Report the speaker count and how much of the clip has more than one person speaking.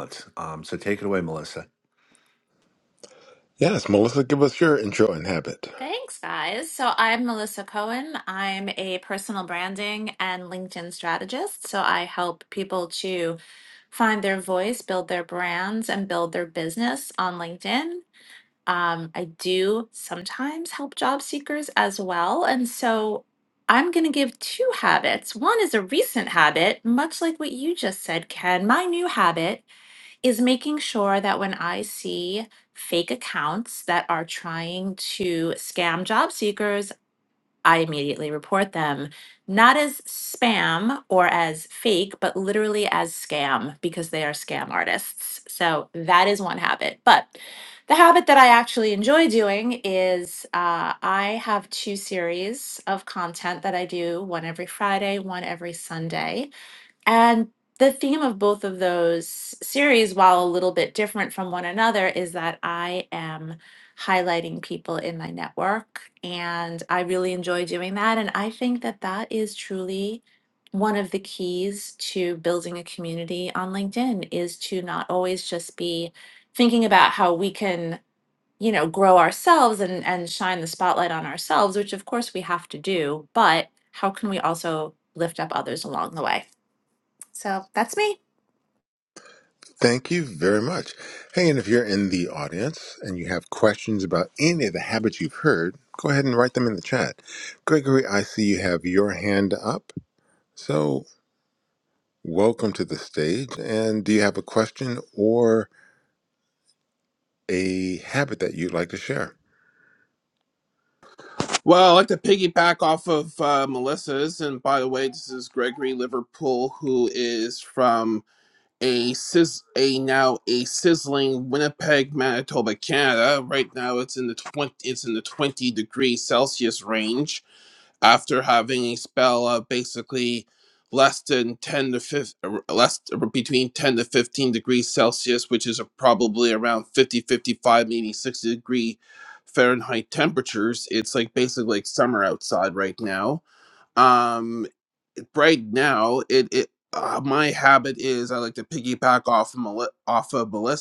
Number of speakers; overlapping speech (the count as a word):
four, no overlap